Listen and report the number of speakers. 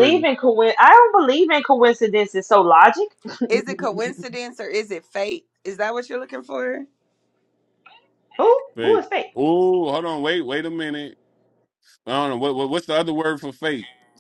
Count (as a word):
three